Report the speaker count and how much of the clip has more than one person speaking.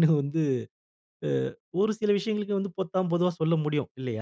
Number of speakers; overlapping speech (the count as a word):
one, no overlap